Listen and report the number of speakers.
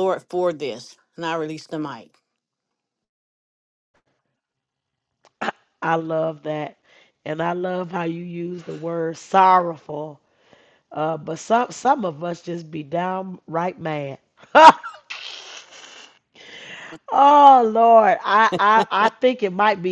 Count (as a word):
two